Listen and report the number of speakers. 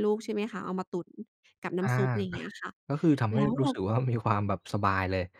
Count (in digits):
2